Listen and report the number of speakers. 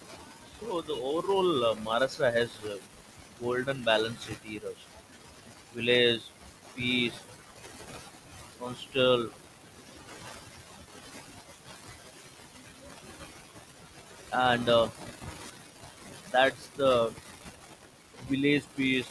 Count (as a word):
one